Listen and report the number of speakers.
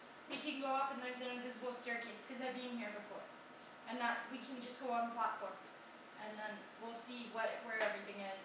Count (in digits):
1